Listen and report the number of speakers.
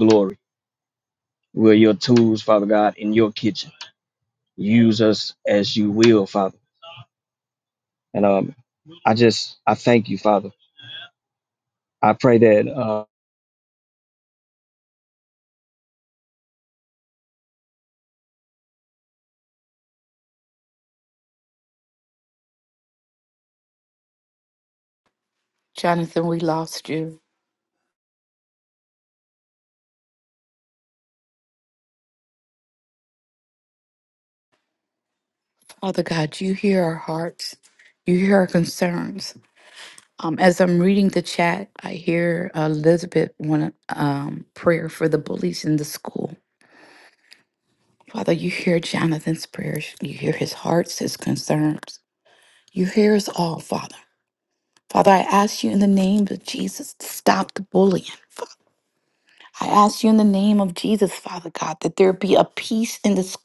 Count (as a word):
two